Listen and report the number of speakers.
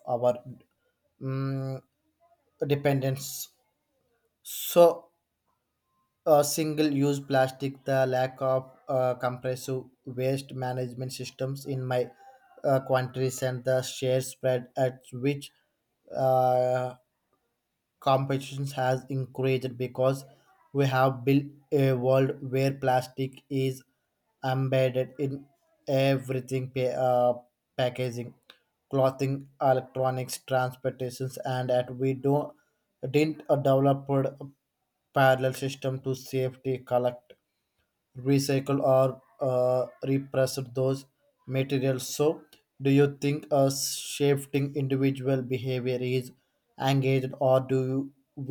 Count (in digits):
1